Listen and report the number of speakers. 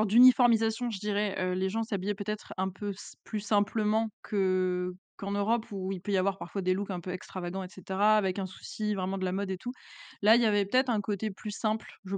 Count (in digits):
1